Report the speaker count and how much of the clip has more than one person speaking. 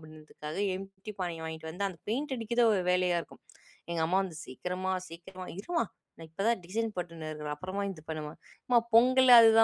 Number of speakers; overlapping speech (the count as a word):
one, no overlap